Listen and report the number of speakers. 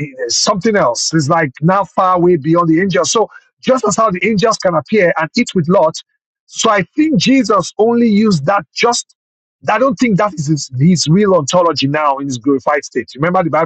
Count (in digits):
1